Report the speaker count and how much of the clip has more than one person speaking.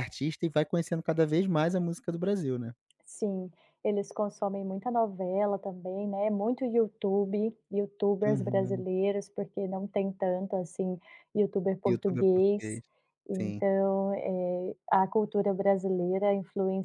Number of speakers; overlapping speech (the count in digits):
2, about 7%